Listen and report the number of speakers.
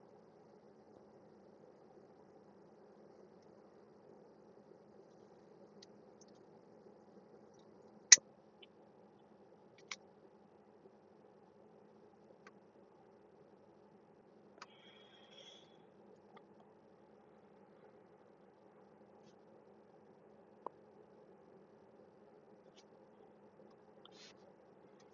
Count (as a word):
zero